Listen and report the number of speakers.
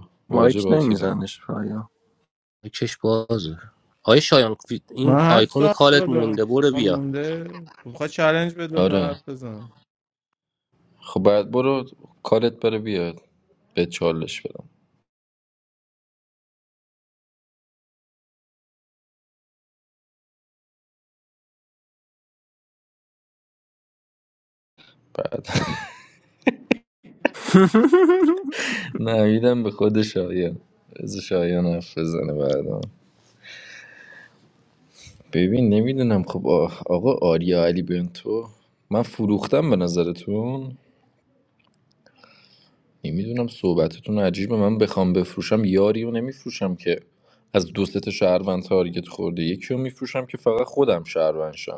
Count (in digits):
4